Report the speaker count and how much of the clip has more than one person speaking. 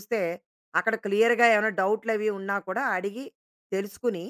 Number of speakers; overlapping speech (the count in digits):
1, no overlap